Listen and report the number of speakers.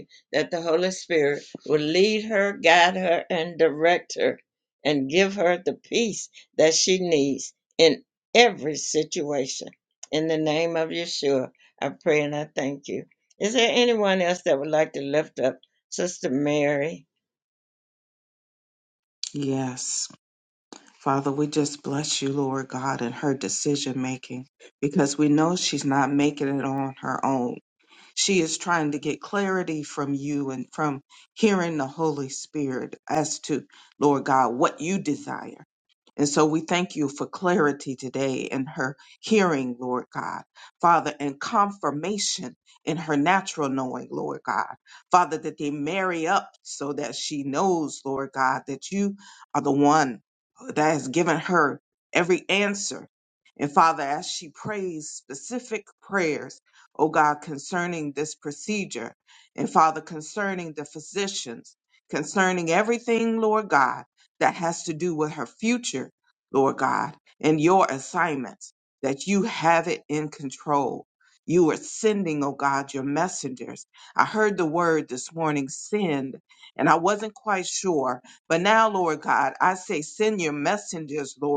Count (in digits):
2